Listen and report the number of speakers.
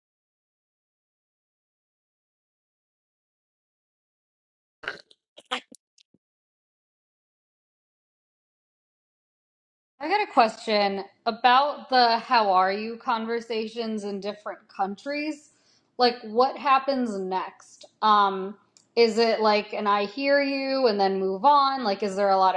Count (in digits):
1